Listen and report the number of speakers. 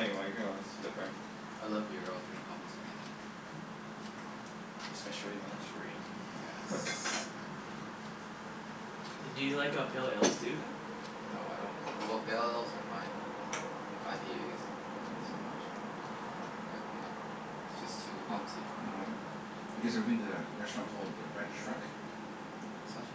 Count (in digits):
4